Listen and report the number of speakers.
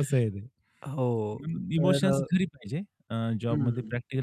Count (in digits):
2